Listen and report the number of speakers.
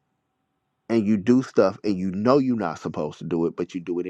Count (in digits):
1